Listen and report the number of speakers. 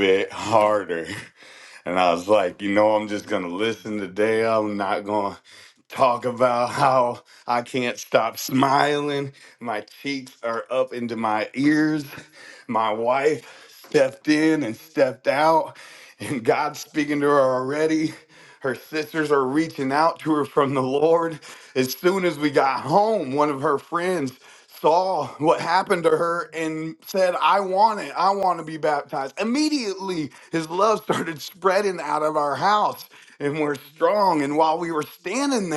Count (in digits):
1